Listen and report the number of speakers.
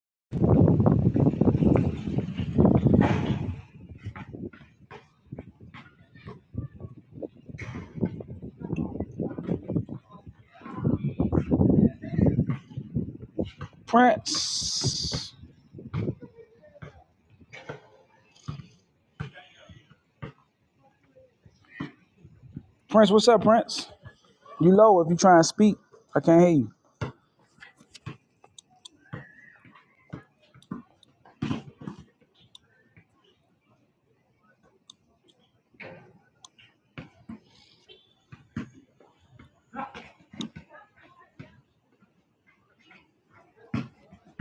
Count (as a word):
one